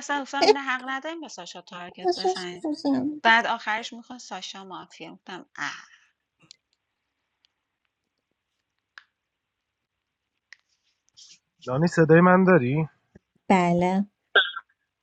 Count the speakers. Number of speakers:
three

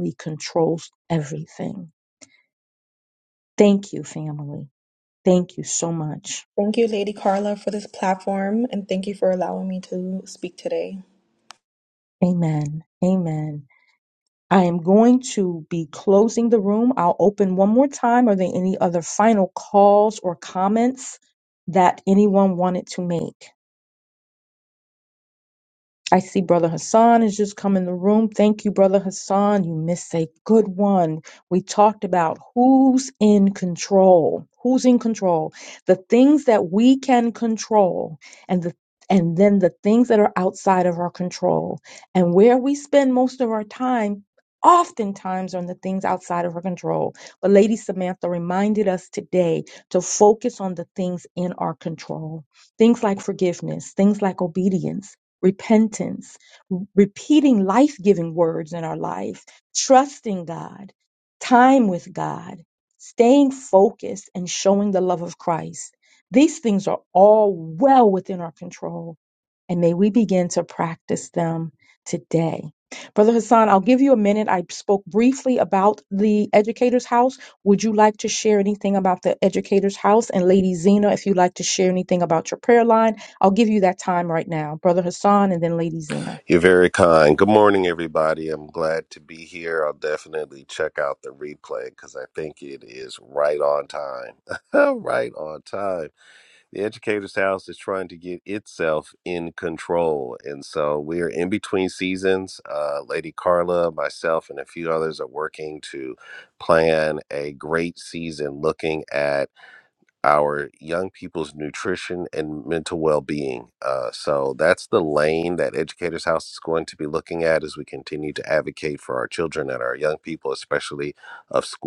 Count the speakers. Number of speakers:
three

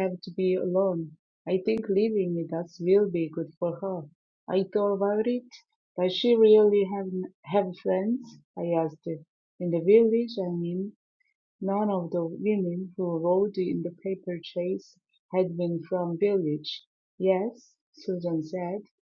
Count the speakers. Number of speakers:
one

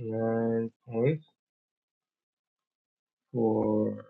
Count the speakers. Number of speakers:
one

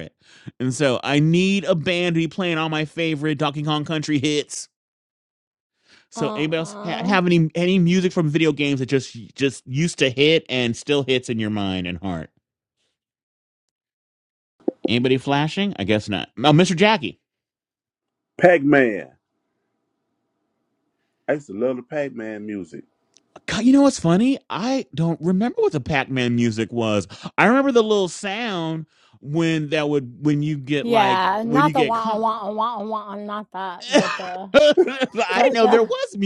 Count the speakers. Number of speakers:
three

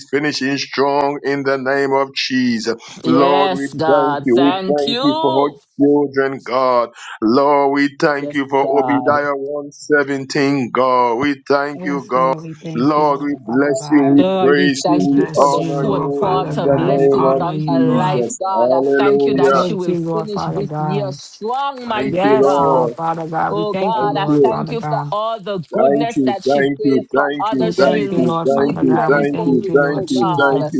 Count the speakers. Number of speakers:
three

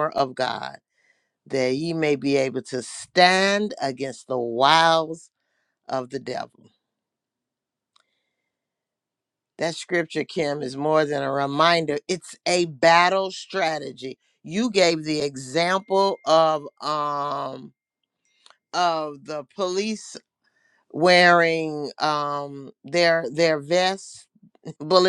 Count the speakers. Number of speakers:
one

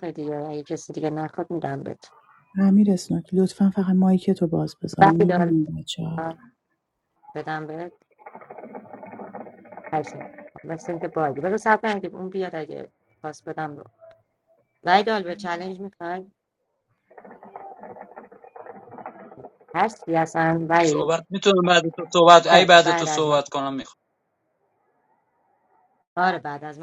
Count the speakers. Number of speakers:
three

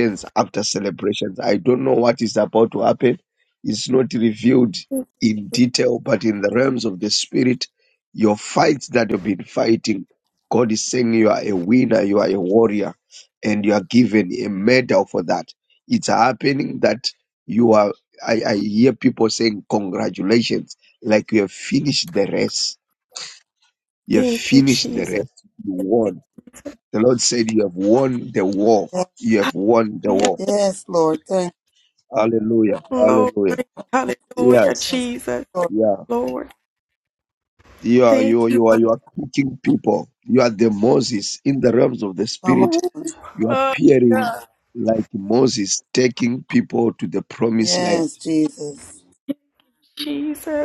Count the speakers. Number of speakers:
three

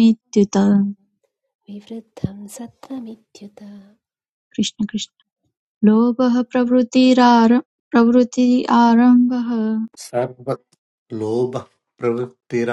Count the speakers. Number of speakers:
three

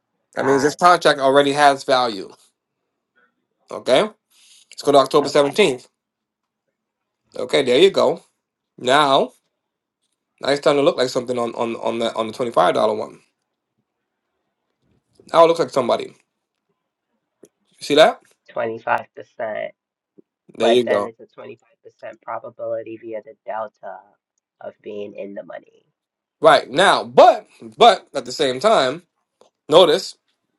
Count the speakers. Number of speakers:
two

